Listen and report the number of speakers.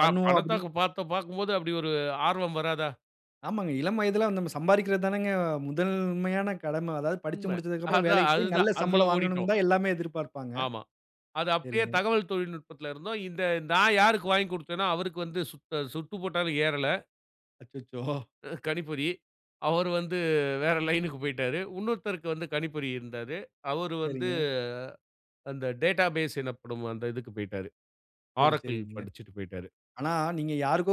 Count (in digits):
2